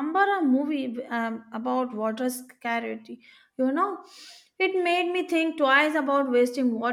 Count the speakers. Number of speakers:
1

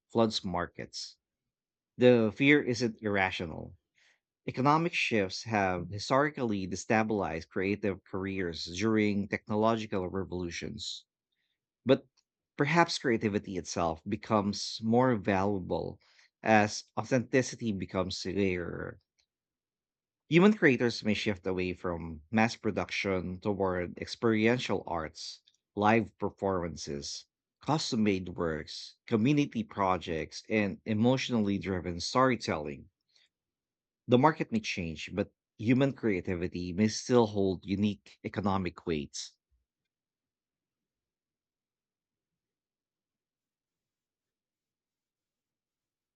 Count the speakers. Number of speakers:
1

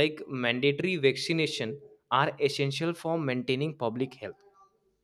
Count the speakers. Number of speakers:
1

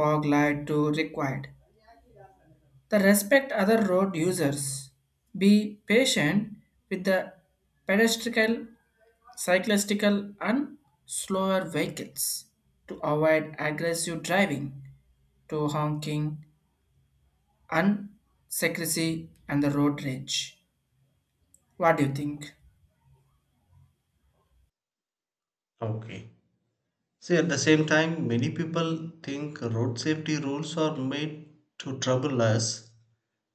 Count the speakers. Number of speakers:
2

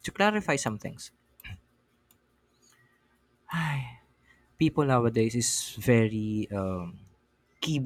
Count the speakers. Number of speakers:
1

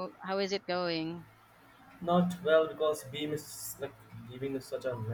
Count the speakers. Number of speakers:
2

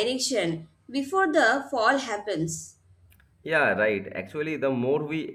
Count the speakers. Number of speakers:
2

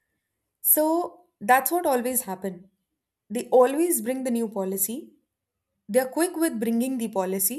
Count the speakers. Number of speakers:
1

